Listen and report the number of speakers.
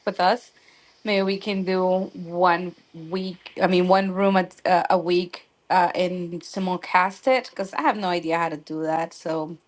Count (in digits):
1